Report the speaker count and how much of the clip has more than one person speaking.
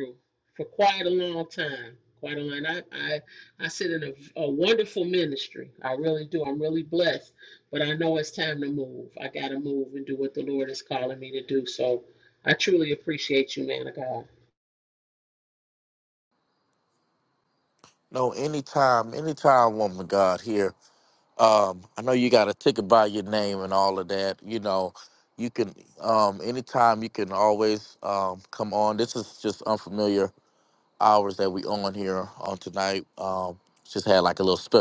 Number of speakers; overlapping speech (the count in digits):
2, no overlap